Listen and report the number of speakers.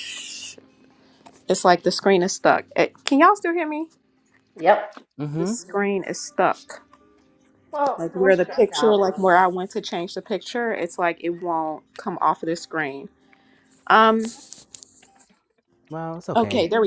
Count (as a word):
three